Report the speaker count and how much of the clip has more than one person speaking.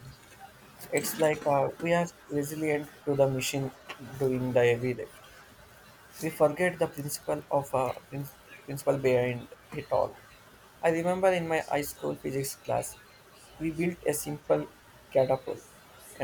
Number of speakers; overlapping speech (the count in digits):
1, no overlap